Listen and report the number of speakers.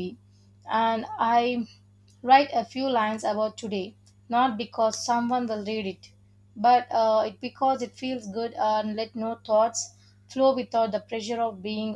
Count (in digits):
1